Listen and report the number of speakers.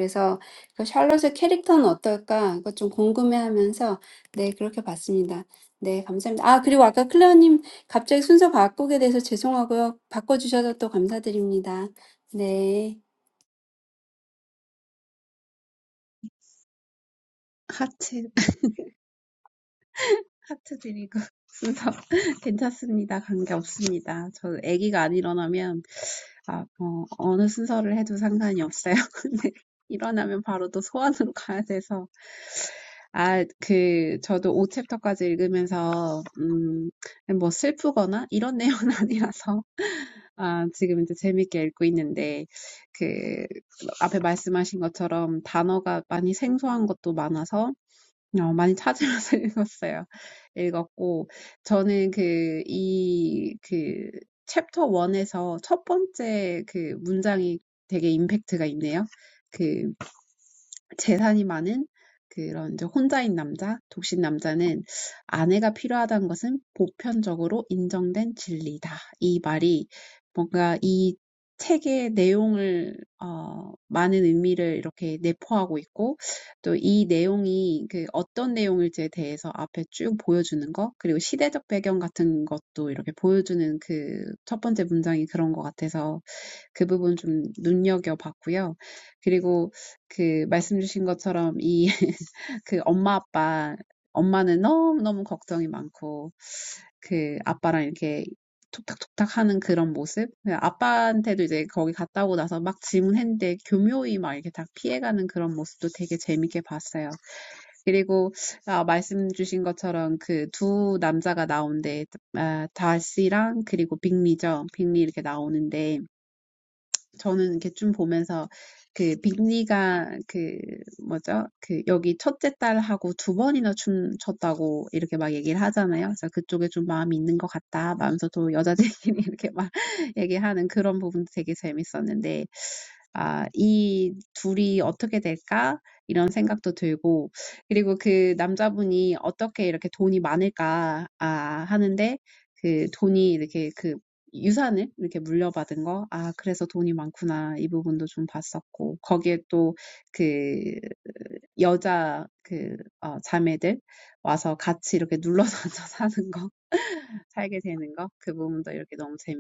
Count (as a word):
two